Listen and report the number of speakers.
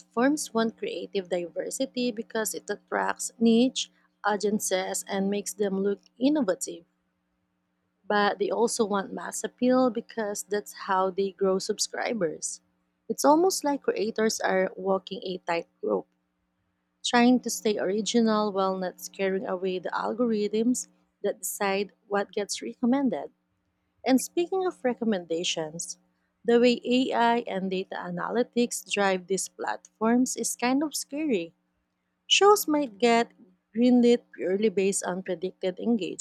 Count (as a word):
one